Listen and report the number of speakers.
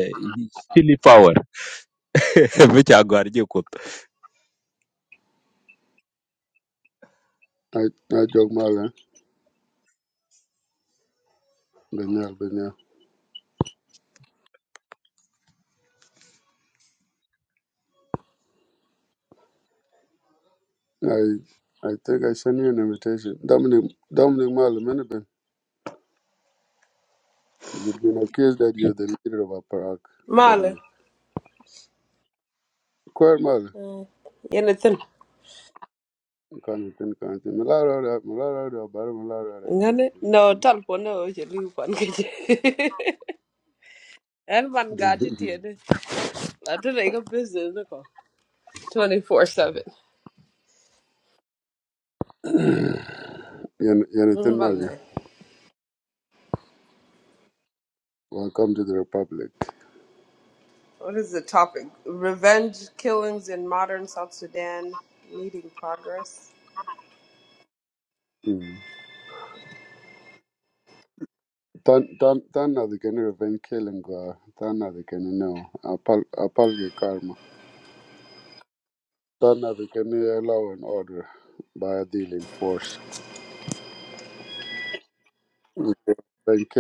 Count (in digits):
3